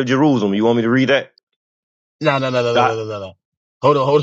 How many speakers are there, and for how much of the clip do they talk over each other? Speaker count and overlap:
2, about 5%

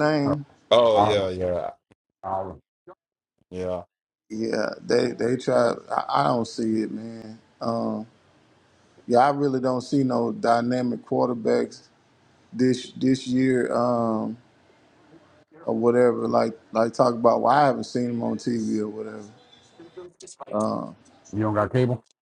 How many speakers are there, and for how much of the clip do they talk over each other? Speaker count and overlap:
3, about 2%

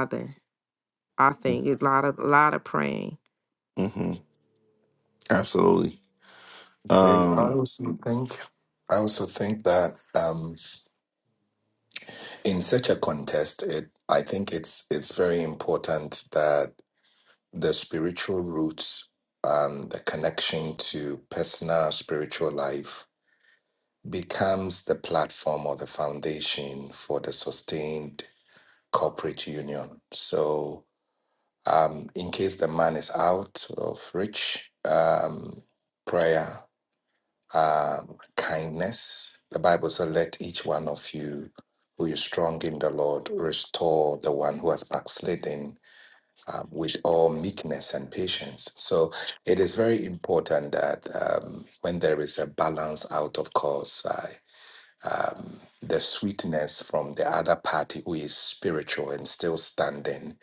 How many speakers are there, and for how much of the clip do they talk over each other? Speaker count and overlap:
3, about 1%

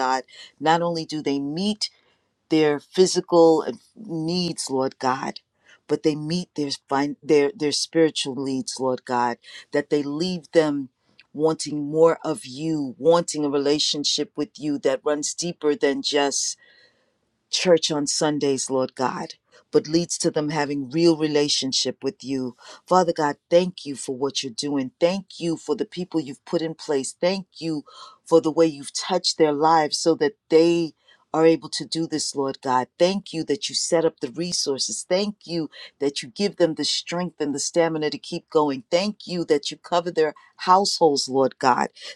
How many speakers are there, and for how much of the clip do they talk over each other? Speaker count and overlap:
1, no overlap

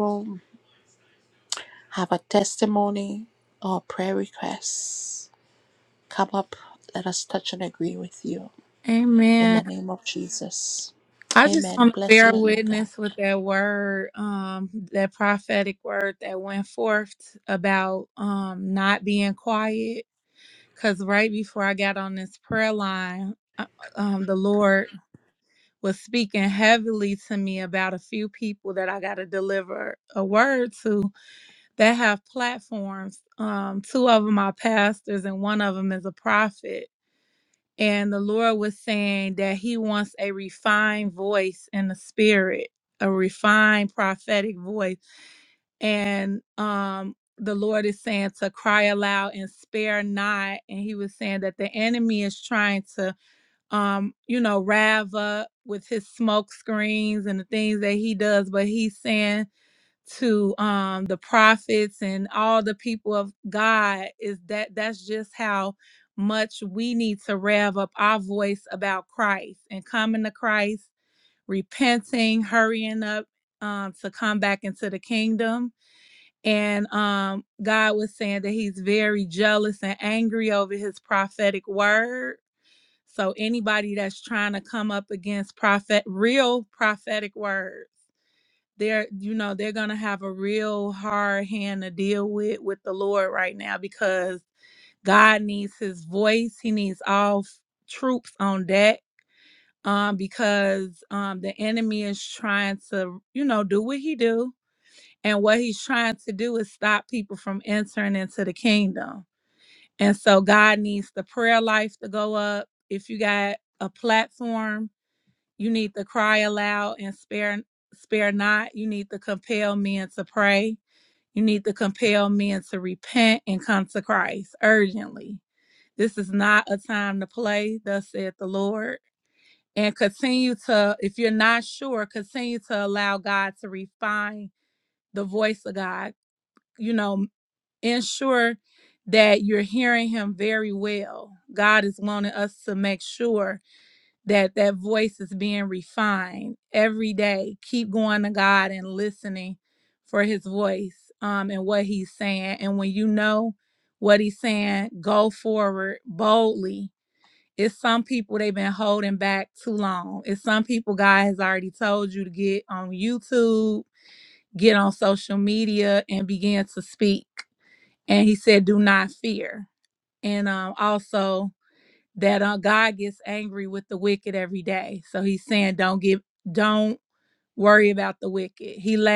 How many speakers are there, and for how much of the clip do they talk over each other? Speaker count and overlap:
2, about 1%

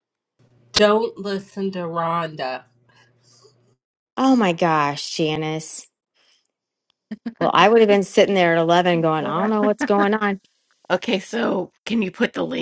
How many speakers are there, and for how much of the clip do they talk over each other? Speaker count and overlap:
3, no overlap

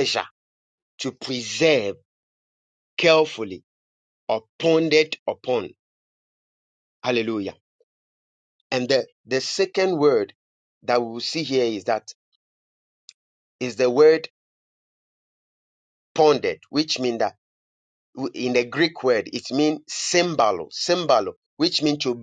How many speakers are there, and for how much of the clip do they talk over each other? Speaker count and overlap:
1, no overlap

